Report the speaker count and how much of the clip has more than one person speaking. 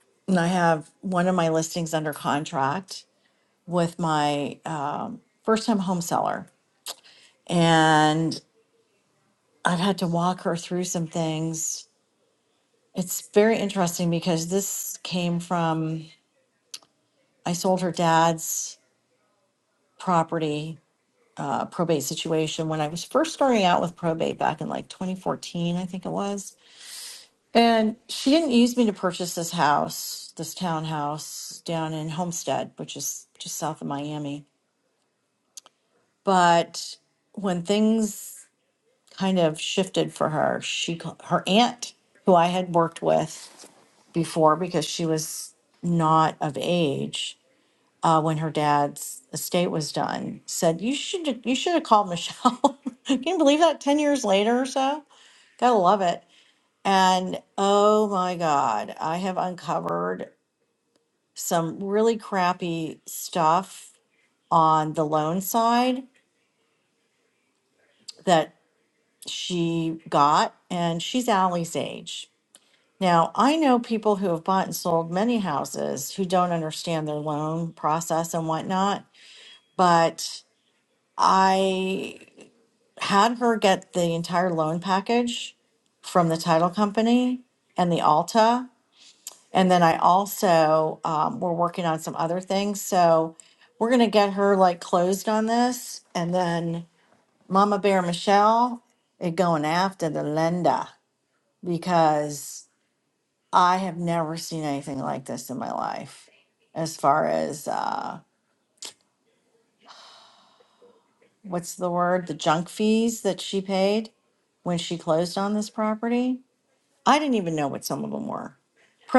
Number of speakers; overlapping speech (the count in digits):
1, no overlap